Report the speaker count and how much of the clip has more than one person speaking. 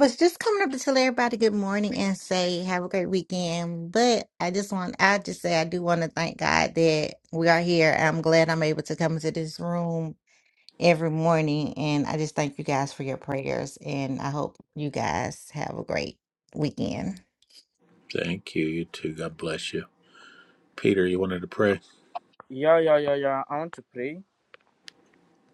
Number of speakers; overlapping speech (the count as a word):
three, no overlap